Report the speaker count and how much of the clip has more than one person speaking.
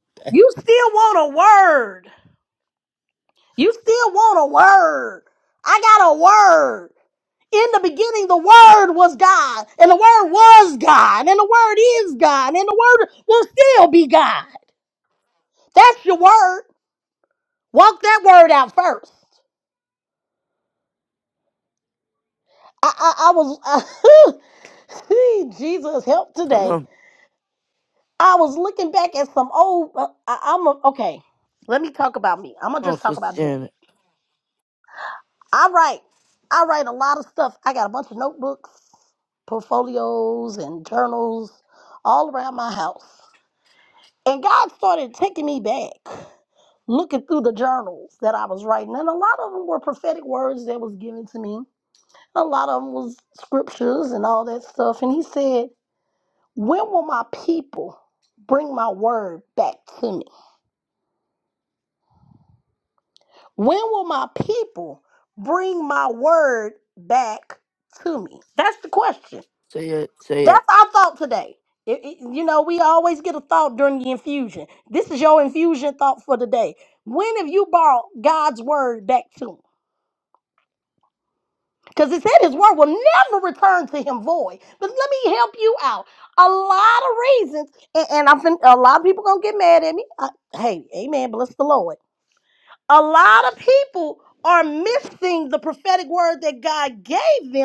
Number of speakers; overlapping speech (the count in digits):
2, about 1%